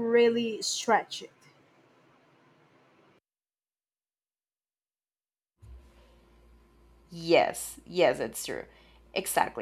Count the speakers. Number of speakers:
two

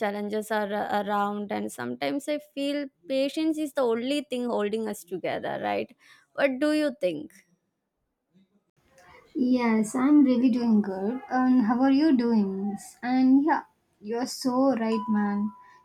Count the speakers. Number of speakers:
two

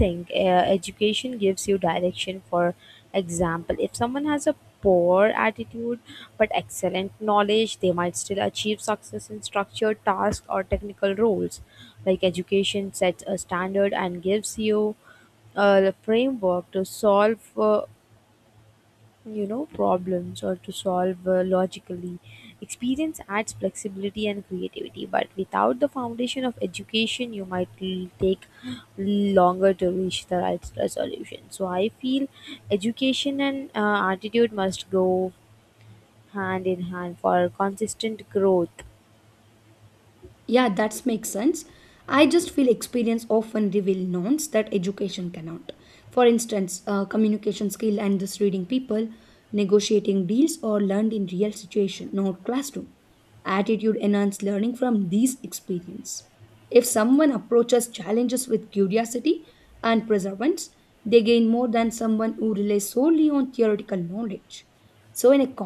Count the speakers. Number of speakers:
two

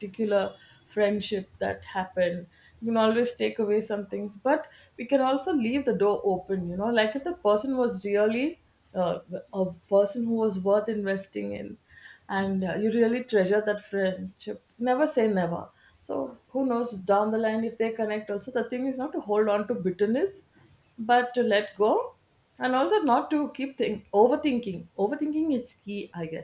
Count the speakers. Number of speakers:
one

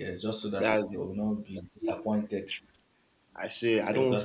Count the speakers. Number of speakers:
two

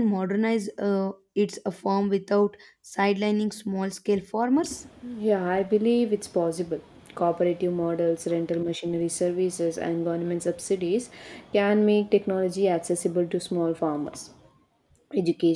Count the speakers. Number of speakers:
two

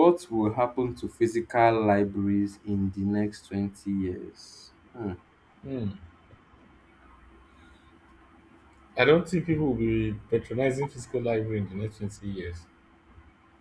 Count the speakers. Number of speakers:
two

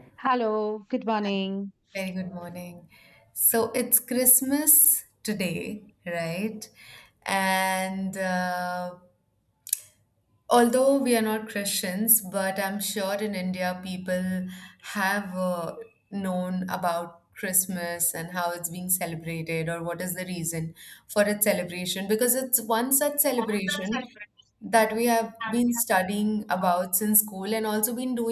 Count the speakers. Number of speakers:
two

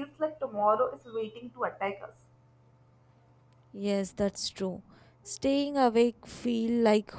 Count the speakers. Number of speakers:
two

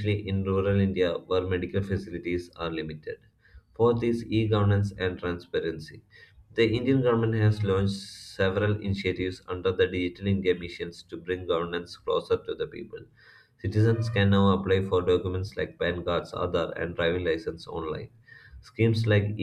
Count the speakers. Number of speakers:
one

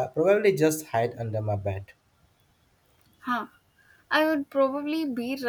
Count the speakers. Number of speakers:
two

